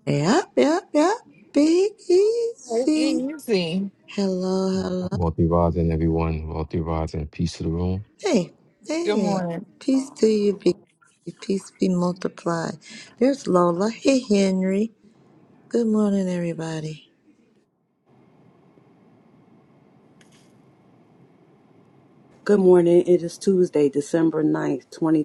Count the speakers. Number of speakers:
4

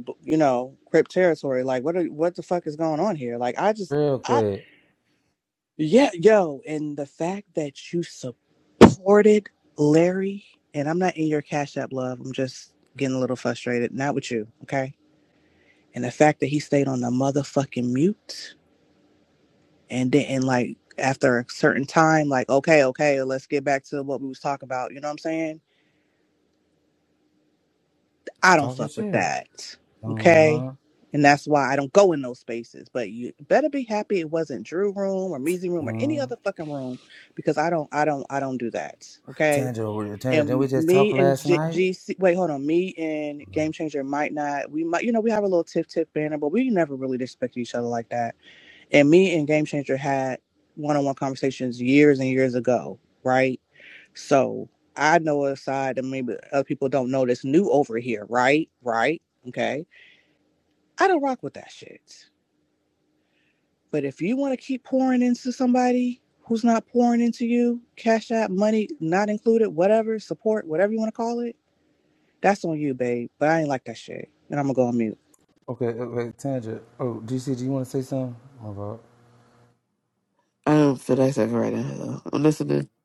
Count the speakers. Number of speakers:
3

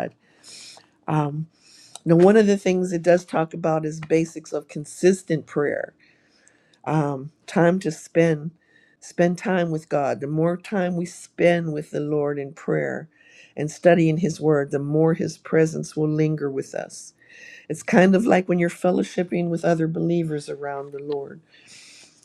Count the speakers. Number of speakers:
1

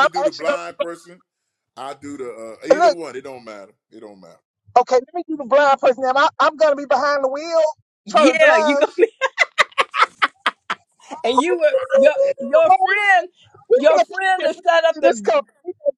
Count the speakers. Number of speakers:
3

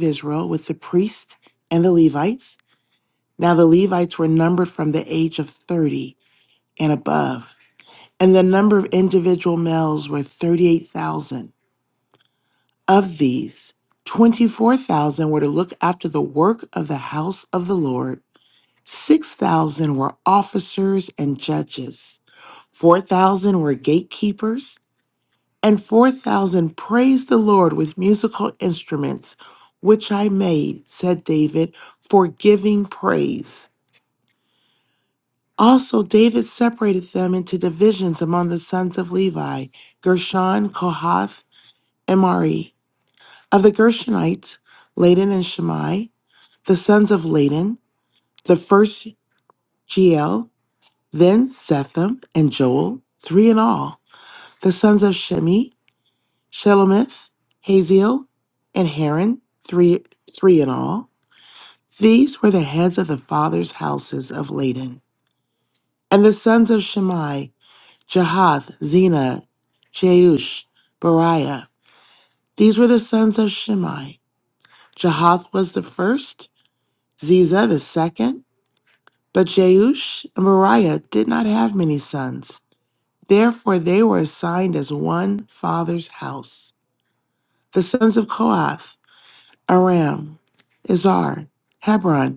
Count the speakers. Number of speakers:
1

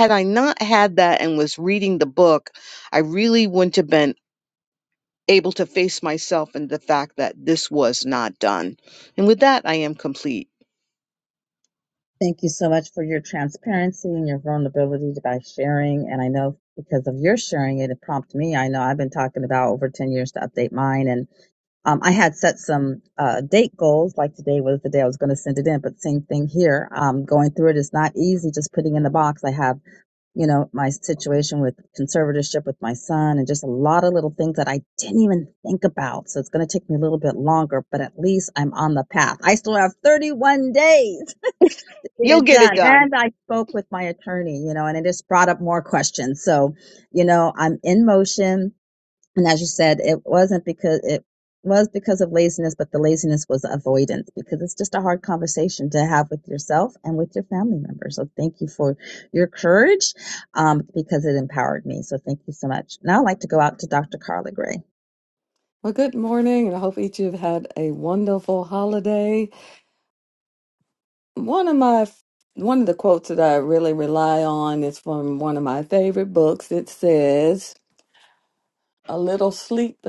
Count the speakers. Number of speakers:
3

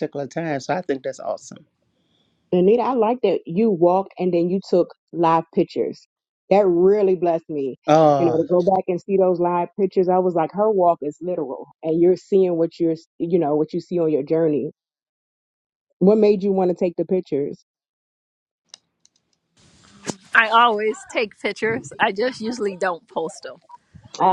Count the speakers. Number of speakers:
3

